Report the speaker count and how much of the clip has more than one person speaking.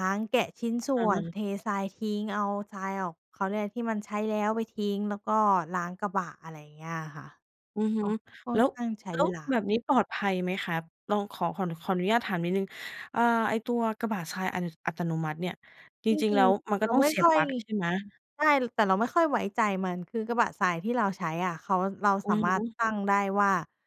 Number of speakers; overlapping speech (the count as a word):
two, about 9%